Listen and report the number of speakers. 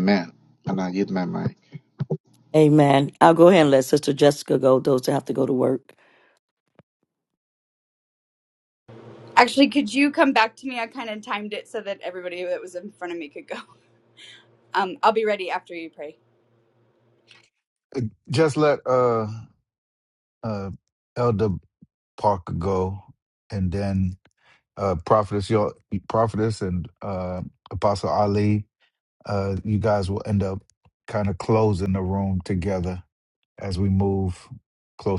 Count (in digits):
4